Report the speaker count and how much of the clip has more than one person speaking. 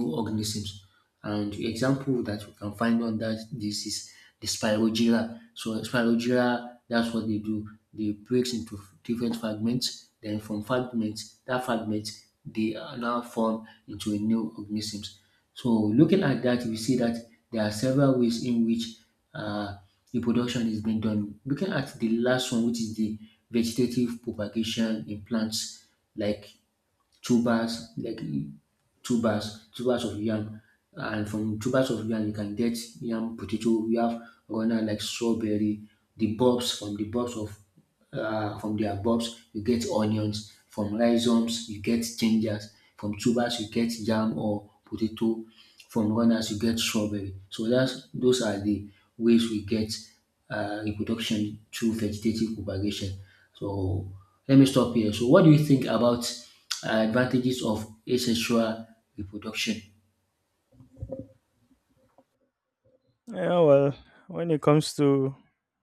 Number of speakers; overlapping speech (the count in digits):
2, no overlap